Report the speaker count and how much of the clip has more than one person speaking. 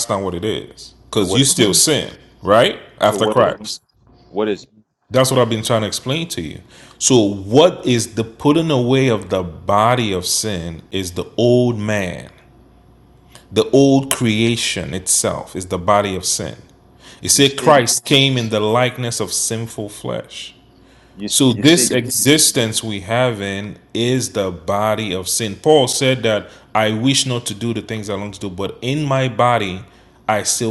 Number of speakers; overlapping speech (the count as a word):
two, about 7%